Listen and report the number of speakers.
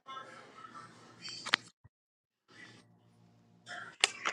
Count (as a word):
zero